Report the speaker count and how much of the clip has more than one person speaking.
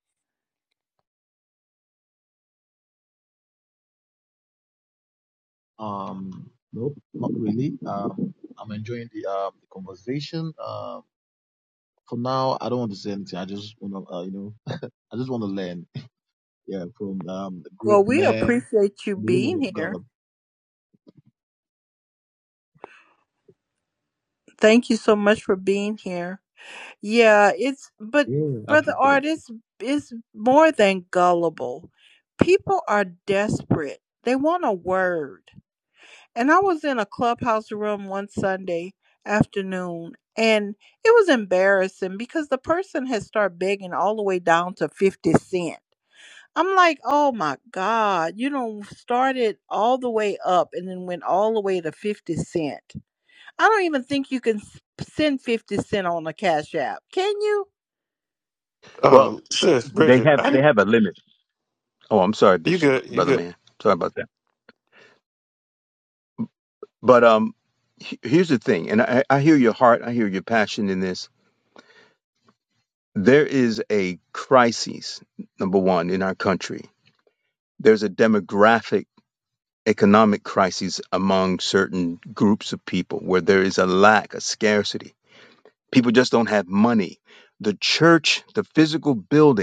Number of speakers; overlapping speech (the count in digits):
4, about 4%